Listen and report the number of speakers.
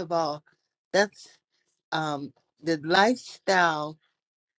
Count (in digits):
1